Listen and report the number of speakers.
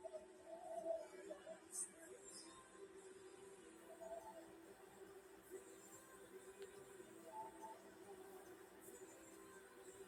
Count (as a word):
zero